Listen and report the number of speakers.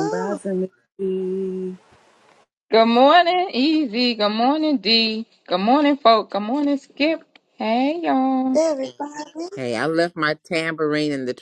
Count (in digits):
4